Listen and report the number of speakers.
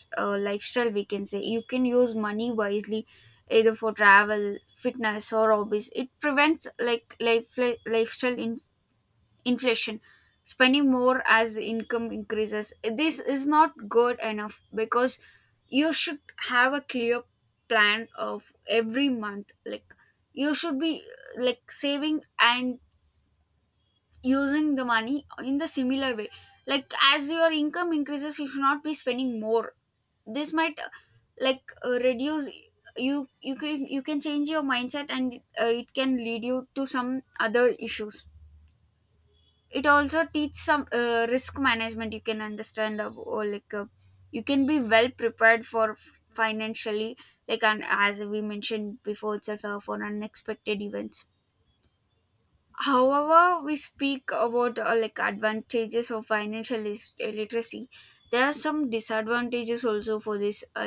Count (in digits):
1